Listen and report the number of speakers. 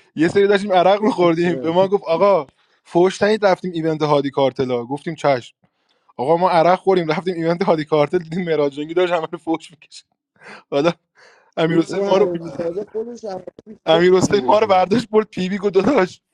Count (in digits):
2